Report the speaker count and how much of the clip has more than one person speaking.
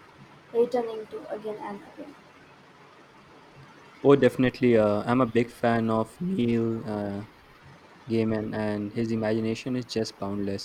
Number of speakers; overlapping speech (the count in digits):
2, no overlap